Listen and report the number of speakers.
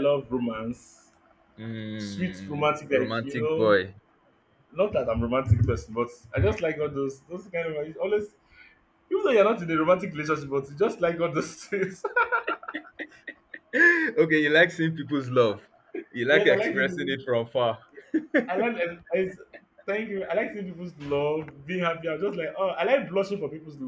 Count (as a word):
two